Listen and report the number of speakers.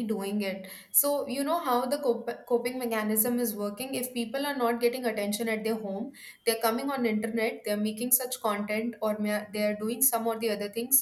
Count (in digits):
1